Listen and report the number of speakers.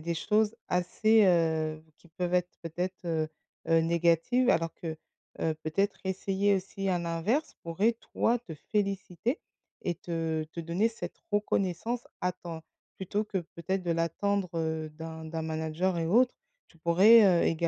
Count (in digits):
1